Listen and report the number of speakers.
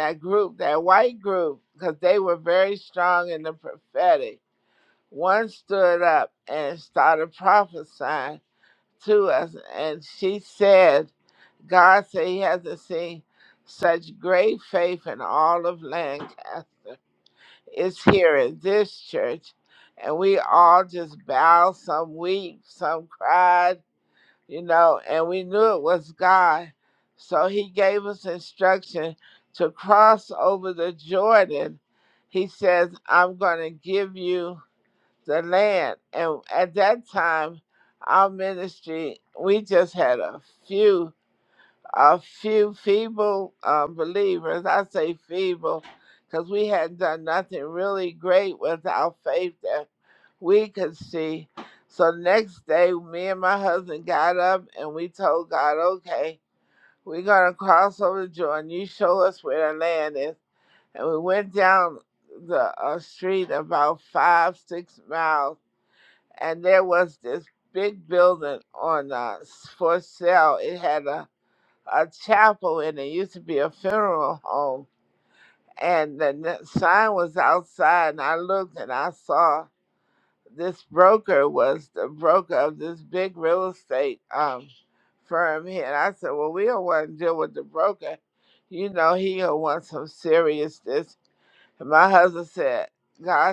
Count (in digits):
1